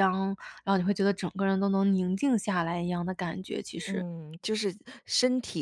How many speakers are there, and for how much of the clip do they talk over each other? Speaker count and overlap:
two, about 4%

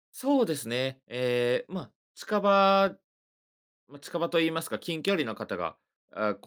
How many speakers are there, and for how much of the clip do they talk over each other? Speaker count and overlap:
one, no overlap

